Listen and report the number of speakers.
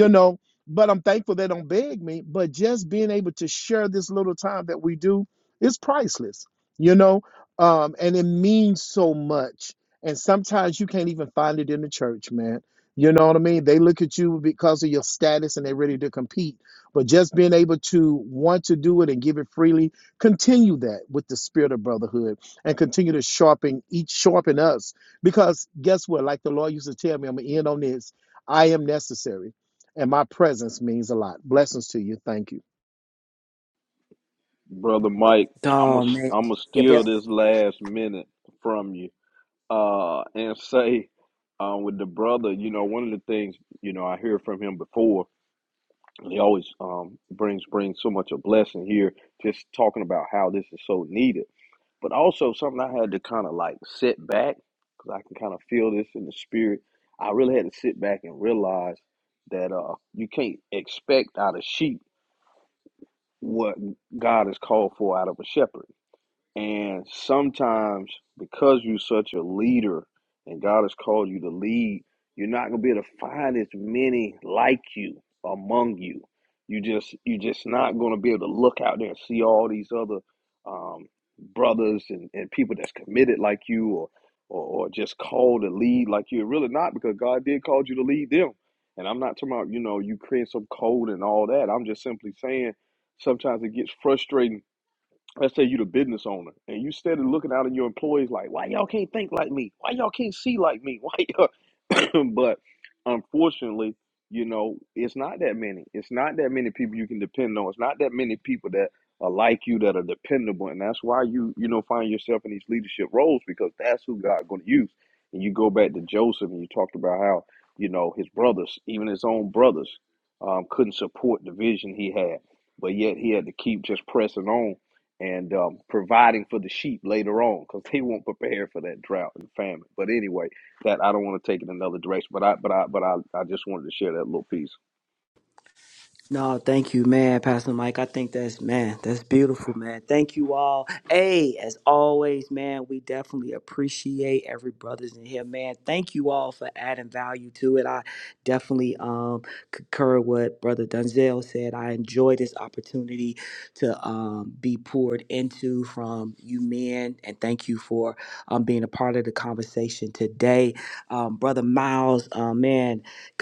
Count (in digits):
3